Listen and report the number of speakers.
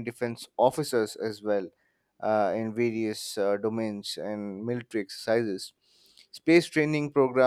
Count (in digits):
1